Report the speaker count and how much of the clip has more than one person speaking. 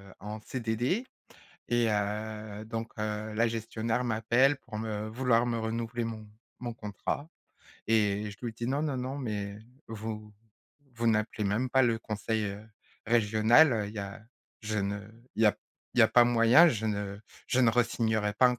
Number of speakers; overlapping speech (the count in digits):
1, no overlap